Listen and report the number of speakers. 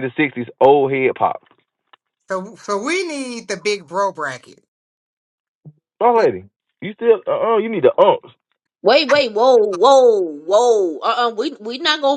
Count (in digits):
3